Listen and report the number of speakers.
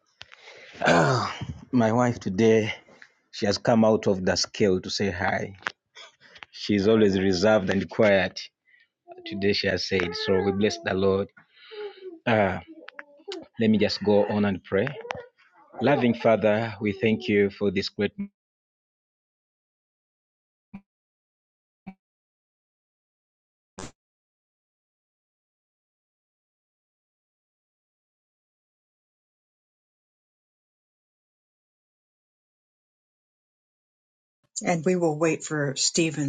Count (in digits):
2